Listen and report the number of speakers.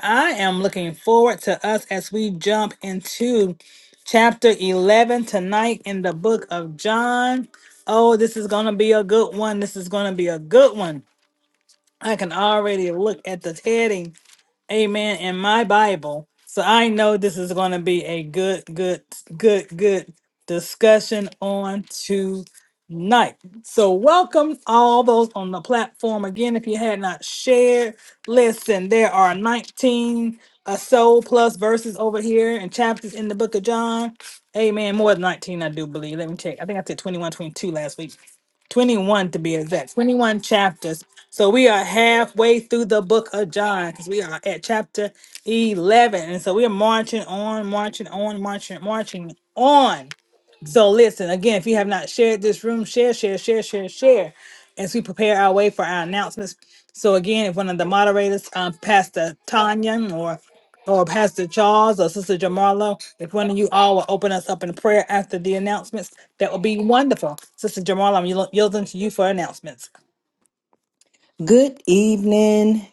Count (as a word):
two